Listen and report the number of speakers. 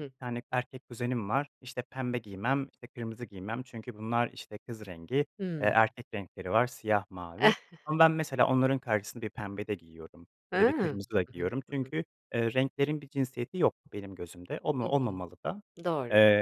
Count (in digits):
2